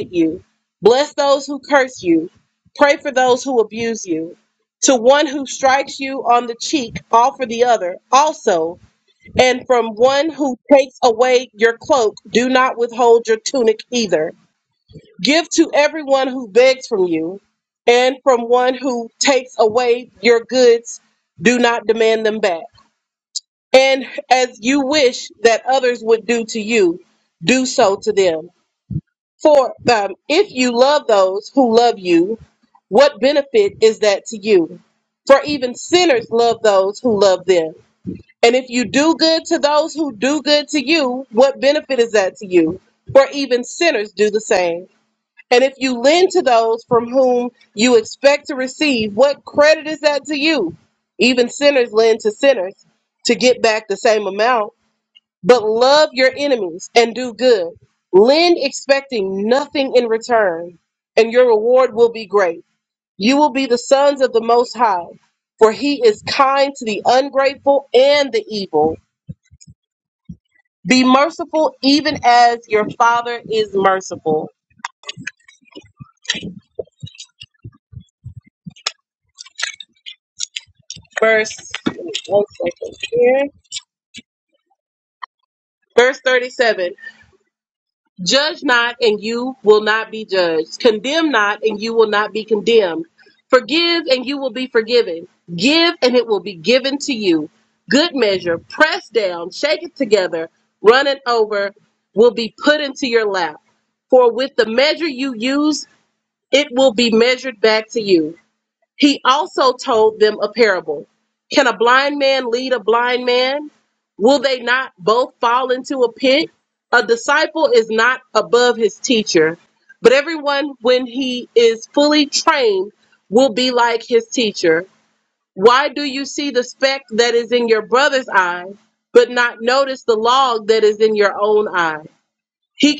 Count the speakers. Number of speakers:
one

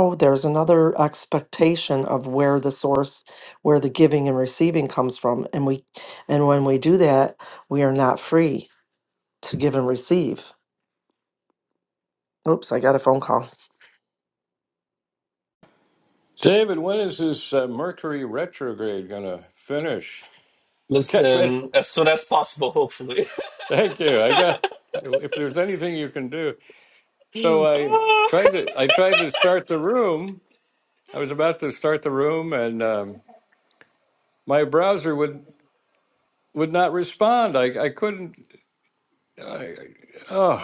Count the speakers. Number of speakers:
three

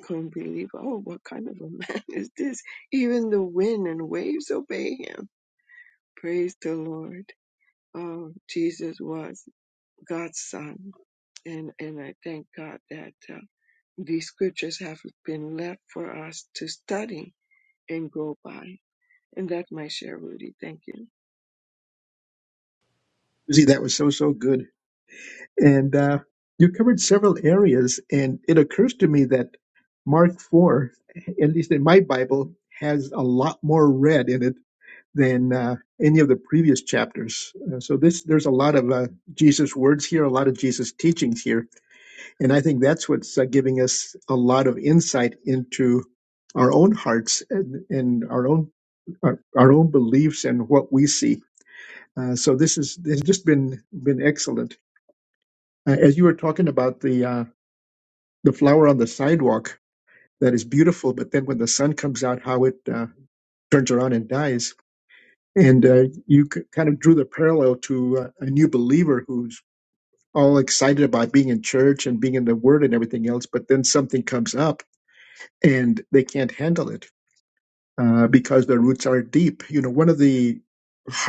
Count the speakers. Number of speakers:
two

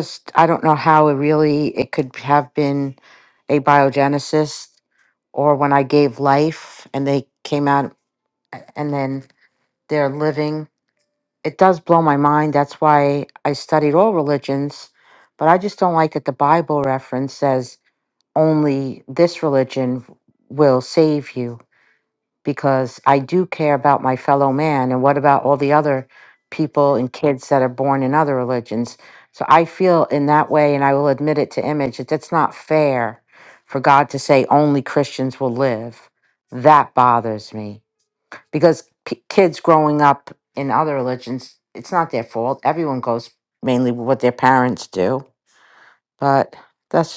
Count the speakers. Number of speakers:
one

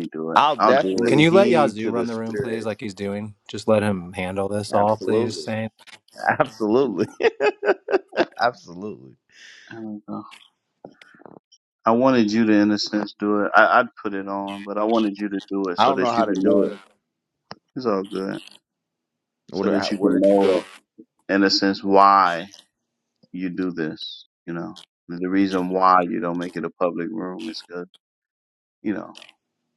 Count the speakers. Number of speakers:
three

